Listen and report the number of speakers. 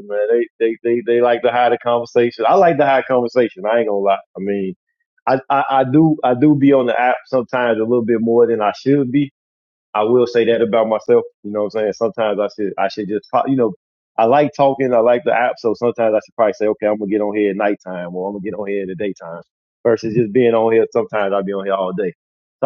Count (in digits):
1